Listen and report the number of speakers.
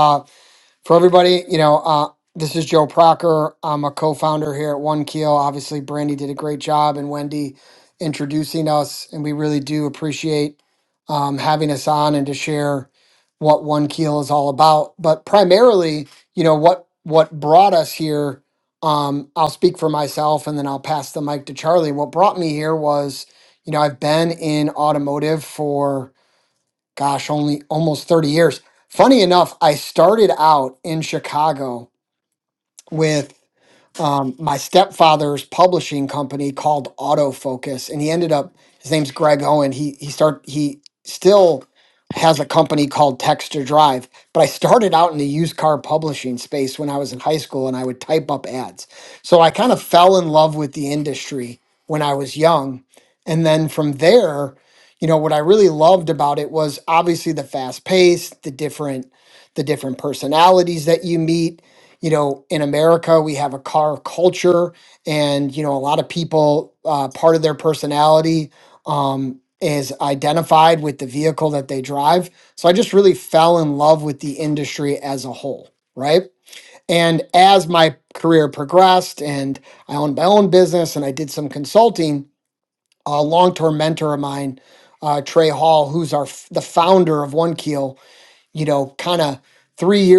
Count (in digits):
1